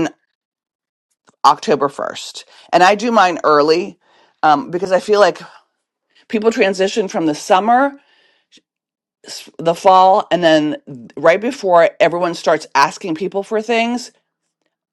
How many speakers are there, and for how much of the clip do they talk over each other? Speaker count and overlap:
one, no overlap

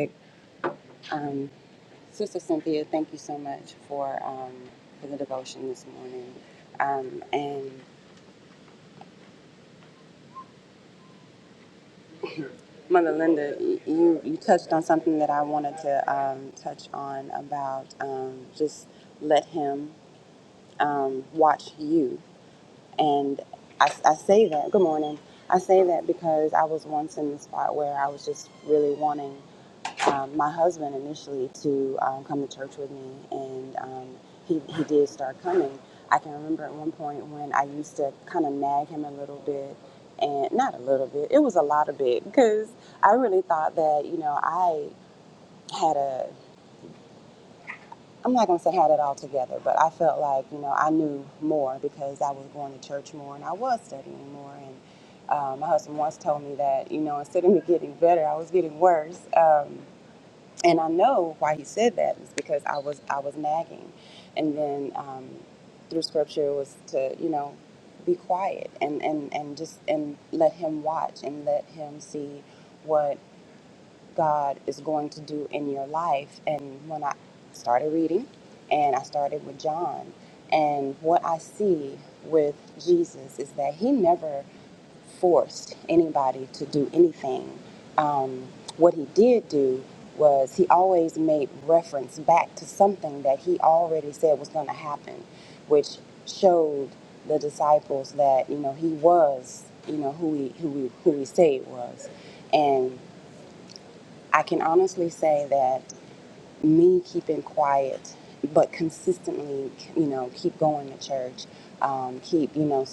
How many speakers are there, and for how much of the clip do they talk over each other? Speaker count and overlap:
one, no overlap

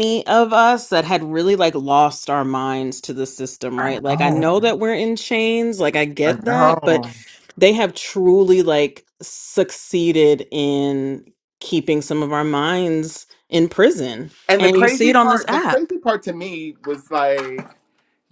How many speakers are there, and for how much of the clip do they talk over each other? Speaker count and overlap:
two, about 15%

